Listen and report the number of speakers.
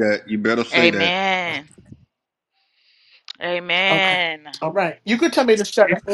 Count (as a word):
three